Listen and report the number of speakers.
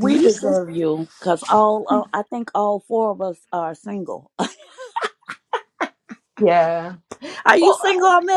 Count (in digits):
2